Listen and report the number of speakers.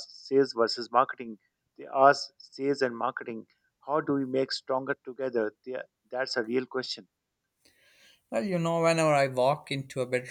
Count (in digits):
2